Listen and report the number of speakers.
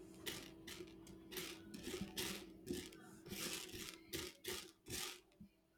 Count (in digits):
0